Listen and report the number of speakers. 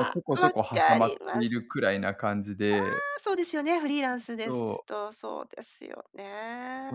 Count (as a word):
two